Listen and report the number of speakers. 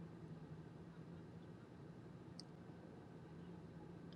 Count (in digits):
0